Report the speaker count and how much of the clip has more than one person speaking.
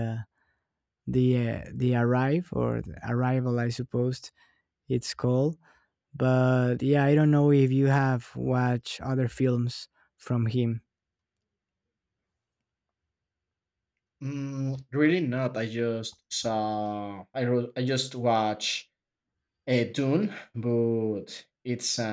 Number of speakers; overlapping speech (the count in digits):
2, no overlap